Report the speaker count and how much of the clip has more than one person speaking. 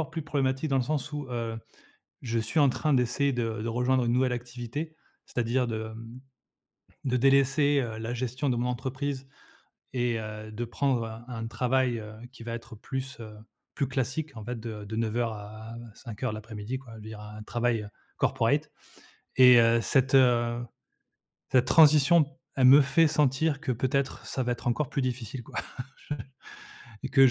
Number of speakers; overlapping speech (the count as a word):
one, no overlap